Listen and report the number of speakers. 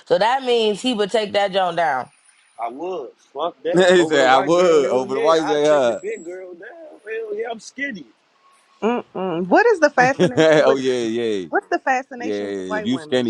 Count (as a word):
four